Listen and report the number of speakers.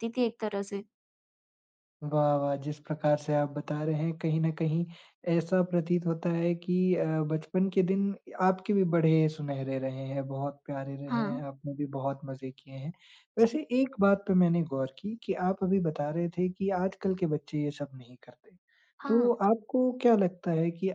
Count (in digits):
2